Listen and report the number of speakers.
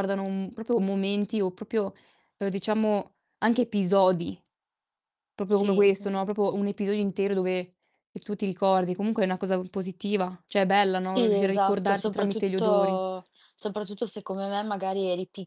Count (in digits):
2